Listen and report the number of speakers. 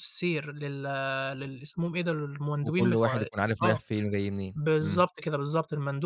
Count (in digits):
2